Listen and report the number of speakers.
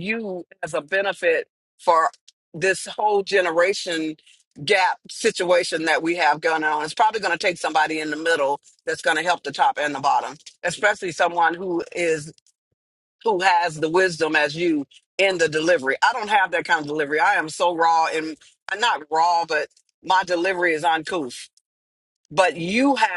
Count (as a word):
one